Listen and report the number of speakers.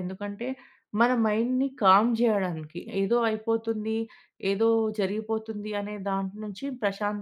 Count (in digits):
1